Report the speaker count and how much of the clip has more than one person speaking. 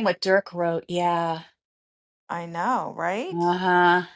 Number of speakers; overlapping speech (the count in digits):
2, about 1%